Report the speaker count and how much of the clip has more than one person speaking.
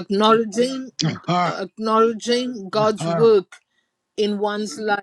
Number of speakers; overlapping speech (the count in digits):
2, about 14%